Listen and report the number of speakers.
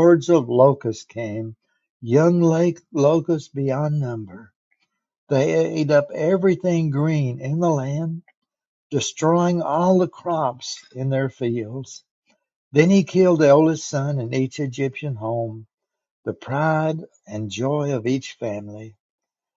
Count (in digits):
1